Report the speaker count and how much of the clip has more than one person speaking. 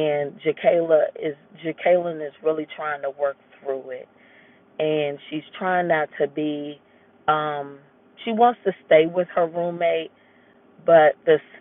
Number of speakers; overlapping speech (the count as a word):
one, no overlap